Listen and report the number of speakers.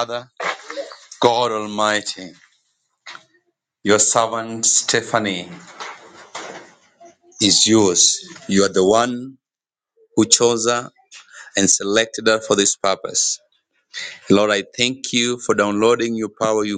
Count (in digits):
1